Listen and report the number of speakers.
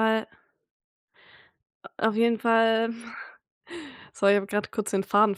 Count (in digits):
1